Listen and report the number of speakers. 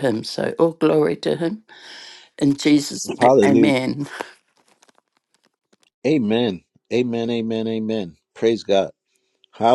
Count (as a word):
two